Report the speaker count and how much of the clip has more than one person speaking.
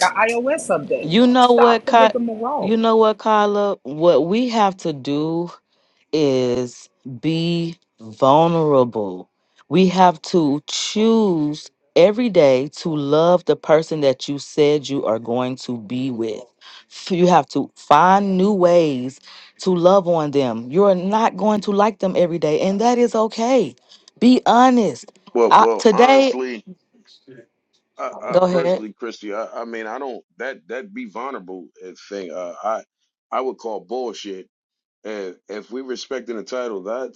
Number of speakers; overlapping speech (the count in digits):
3, about 7%